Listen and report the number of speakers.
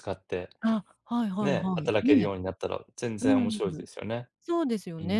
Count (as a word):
two